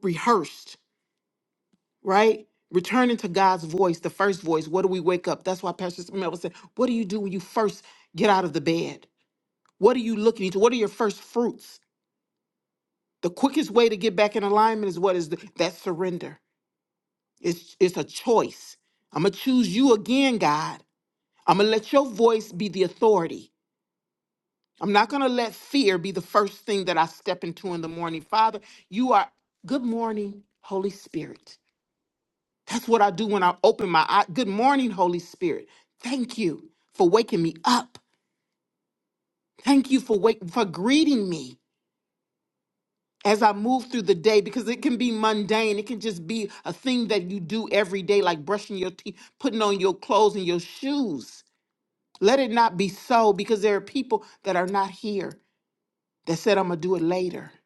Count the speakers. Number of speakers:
1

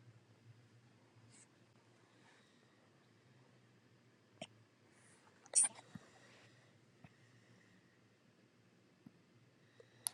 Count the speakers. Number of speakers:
0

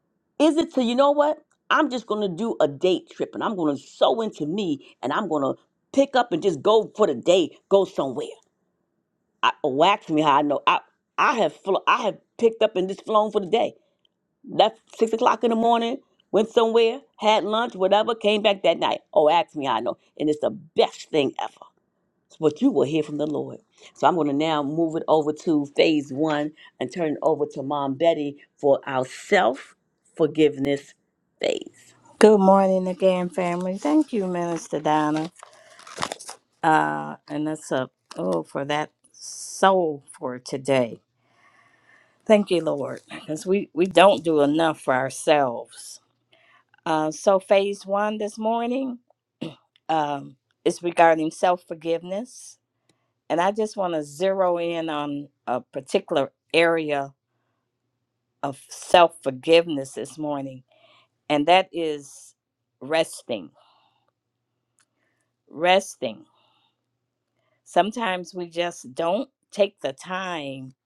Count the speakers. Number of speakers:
2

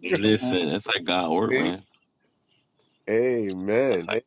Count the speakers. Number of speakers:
2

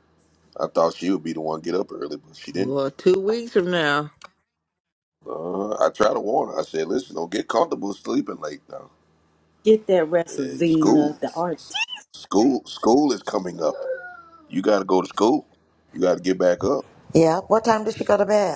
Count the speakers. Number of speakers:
4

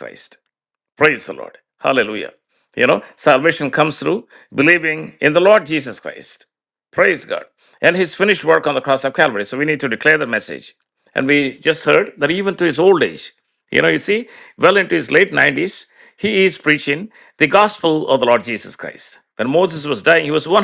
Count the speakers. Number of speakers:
1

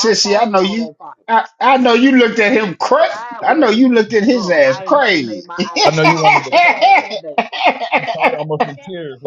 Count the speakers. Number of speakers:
3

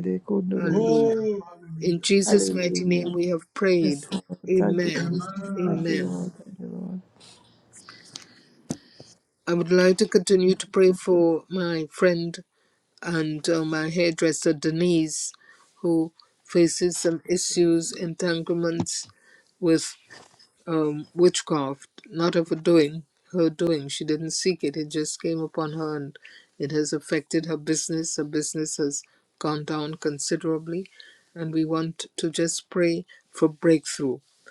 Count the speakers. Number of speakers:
3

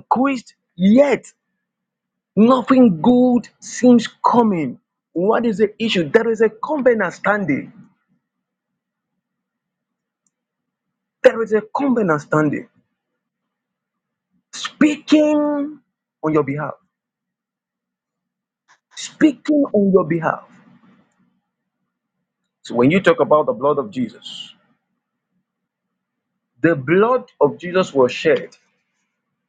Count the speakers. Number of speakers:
1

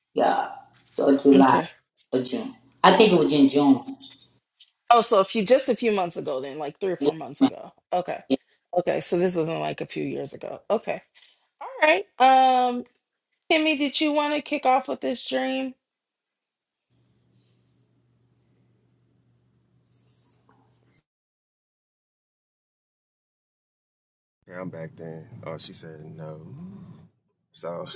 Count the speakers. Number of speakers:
3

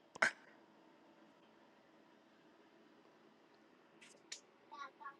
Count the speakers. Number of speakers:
0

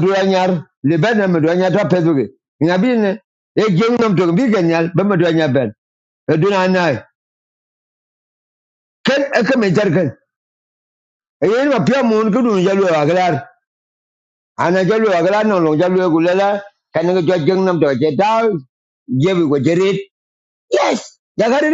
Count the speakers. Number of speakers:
1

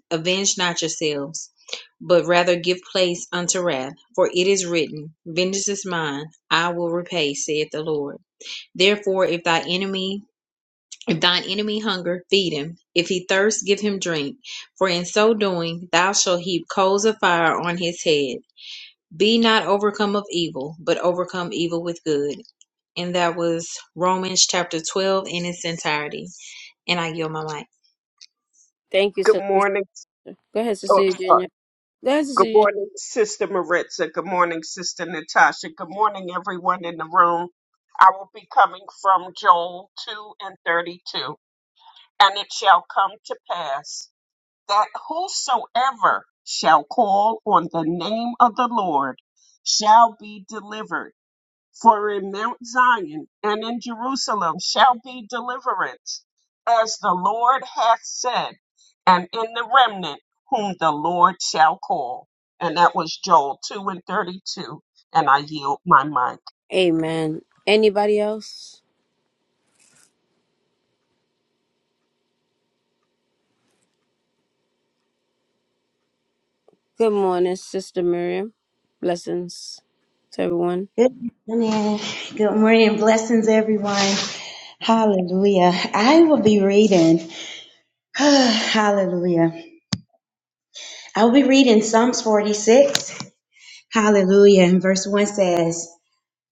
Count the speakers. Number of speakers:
4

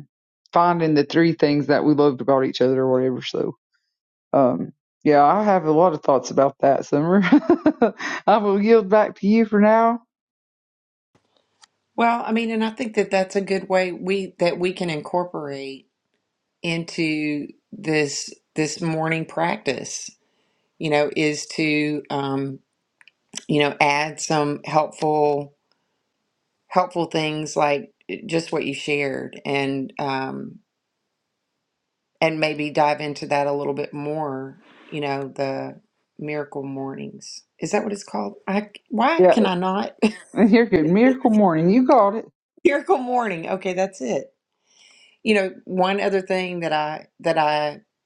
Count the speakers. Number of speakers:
2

